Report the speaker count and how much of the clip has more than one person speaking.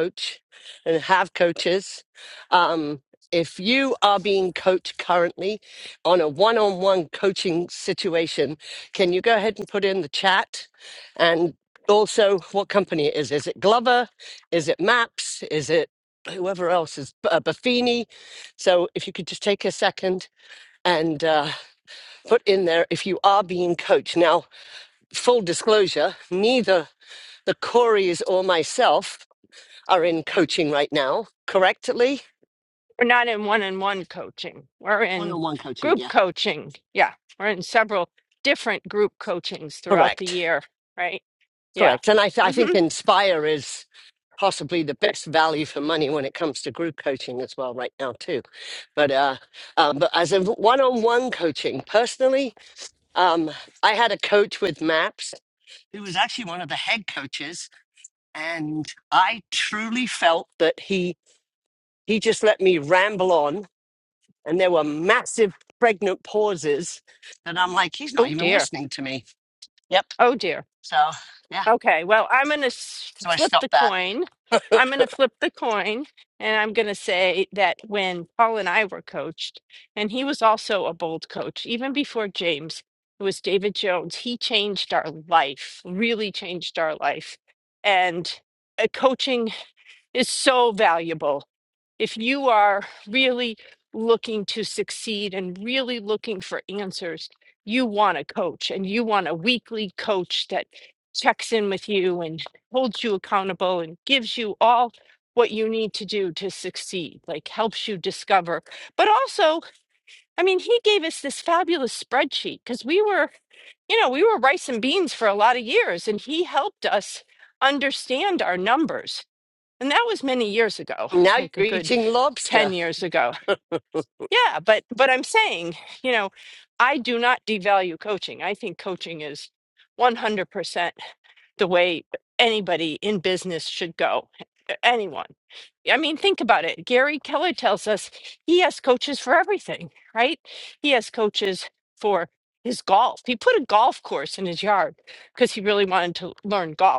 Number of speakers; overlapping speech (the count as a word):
two, about 3%